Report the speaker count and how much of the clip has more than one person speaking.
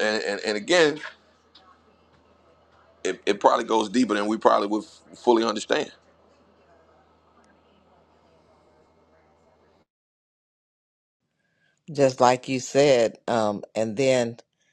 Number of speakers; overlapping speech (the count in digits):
2, no overlap